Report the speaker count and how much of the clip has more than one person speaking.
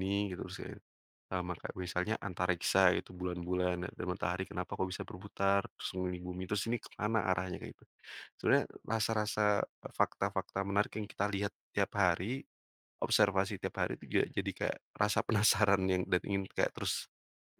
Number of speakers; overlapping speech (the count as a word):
one, no overlap